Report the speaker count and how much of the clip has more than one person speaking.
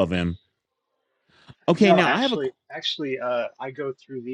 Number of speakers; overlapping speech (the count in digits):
2, about 13%